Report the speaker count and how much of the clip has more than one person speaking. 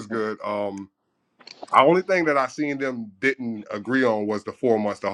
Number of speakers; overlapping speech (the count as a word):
one, no overlap